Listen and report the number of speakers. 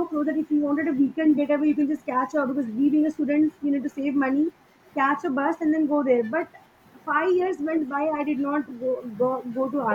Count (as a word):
one